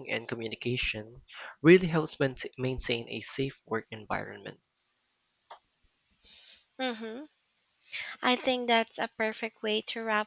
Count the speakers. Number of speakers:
2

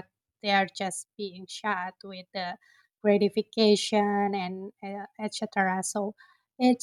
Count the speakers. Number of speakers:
1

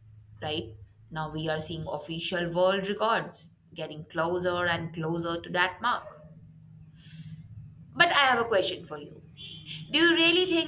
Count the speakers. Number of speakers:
1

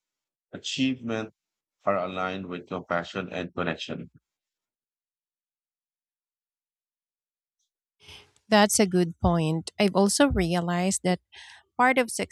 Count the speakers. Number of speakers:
2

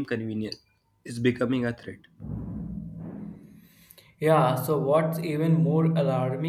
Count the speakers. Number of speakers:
2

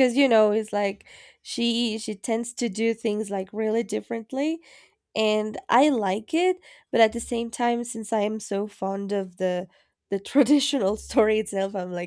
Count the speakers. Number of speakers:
1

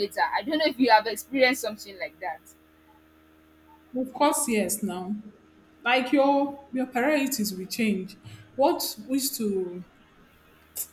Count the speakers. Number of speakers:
2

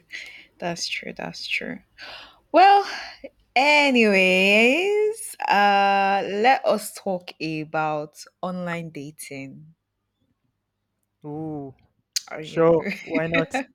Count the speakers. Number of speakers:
2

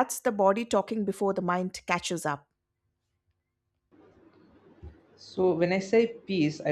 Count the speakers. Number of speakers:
2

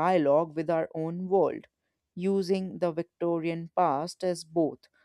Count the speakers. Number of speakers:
1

